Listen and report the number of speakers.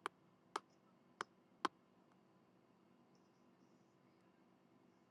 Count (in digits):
0